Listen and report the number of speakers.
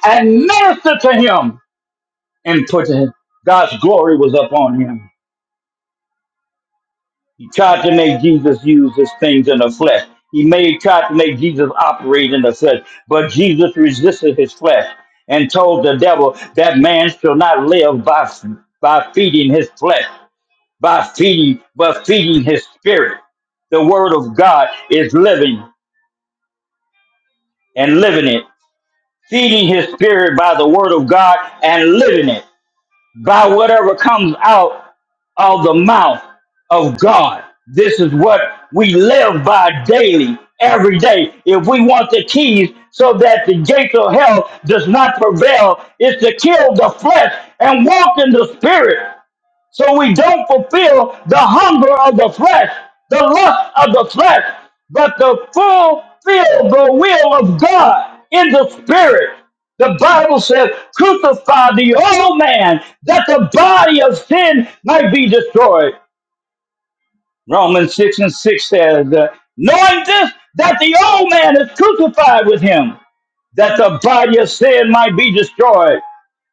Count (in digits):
1